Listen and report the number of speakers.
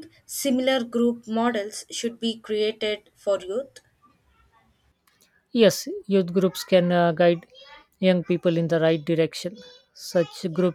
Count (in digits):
2